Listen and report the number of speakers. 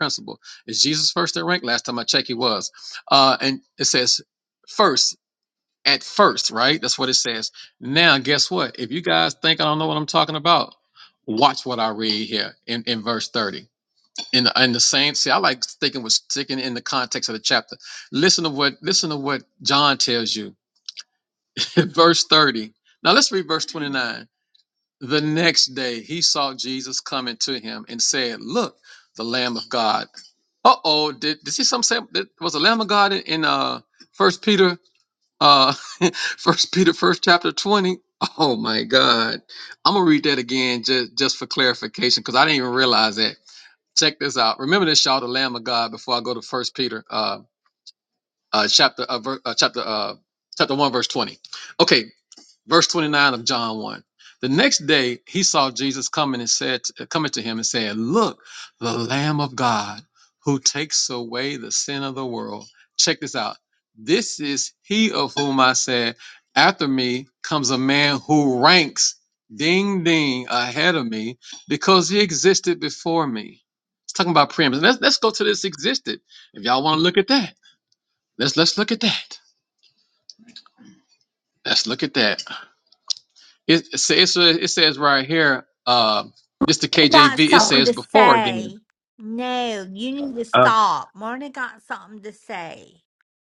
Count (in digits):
2